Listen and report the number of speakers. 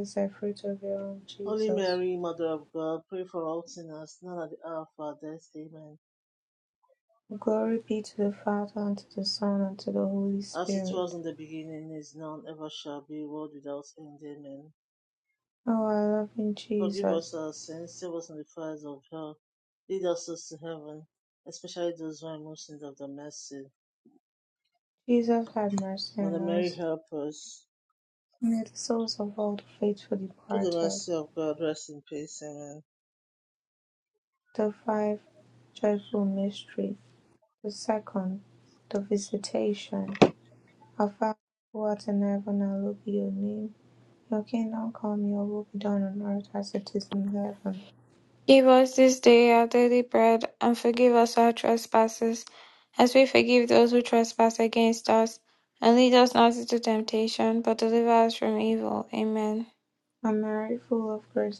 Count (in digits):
3